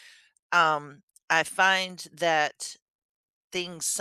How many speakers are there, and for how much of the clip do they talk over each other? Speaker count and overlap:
1, no overlap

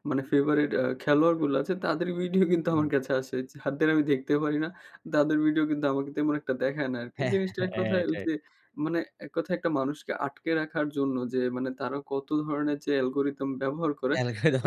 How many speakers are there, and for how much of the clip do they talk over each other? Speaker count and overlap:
2, about 9%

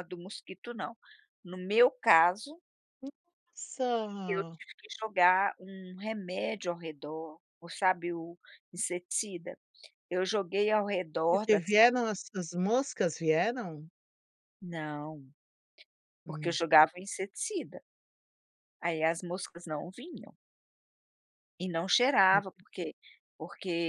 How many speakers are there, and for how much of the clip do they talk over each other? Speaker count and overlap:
2, about 4%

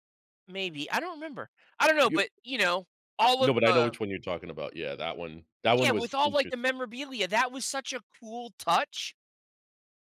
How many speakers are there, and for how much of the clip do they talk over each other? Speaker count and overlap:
2, about 16%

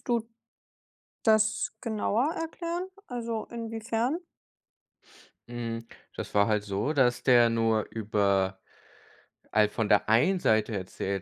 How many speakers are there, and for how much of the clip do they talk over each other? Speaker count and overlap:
2, no overlap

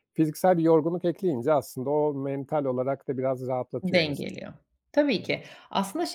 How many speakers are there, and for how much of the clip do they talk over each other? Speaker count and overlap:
2, about 8%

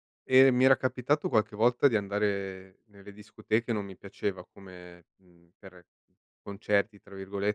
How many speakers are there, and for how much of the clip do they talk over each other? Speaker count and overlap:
1, no overlap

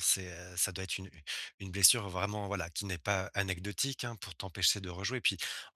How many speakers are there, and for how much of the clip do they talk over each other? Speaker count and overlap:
1, no overlap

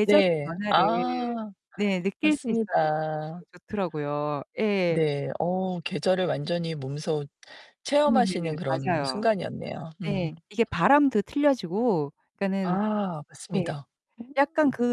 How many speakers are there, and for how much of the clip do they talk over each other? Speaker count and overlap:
2, about 26%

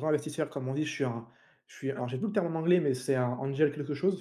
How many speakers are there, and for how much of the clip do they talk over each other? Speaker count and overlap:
1, no overlap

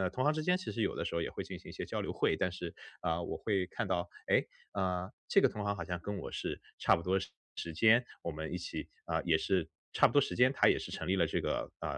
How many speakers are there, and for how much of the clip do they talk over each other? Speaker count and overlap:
1, no overlap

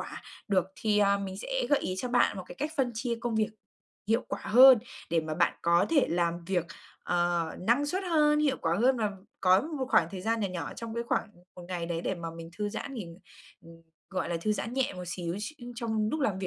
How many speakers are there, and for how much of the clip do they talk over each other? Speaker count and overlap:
1, no overlap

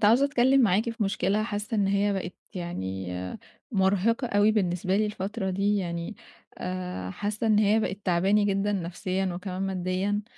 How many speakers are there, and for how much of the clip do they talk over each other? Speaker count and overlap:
1, no overlap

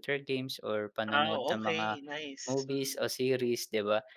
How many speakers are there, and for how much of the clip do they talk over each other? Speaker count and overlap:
2, about 32%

